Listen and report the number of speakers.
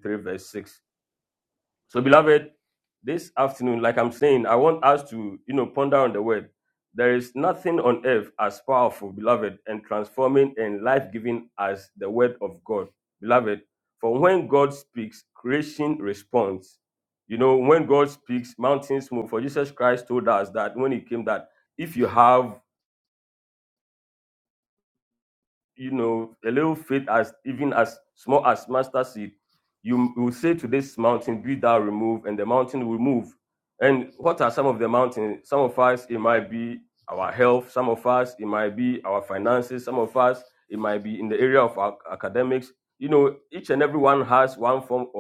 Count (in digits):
1